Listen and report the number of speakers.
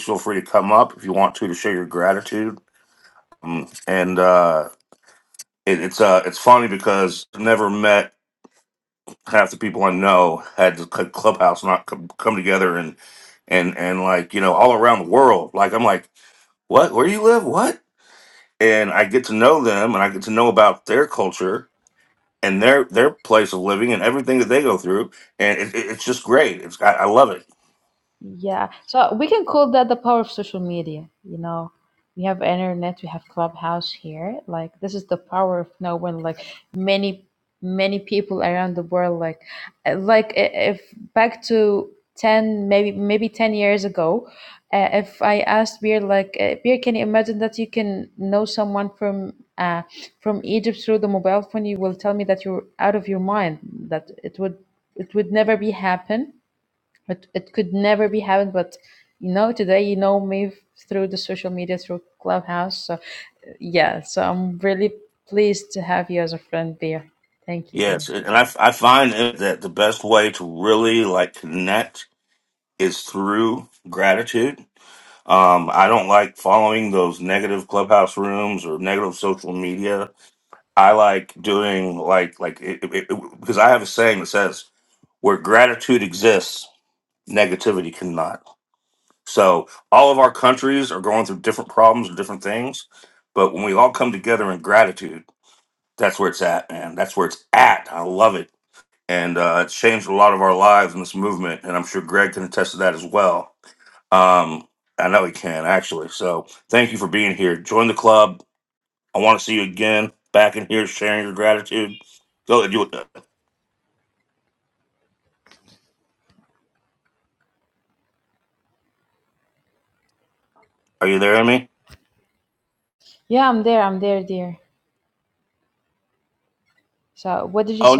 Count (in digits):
2